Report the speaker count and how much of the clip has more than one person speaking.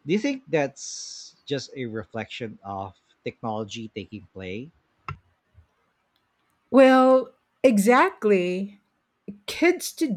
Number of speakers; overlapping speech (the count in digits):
2, no overlap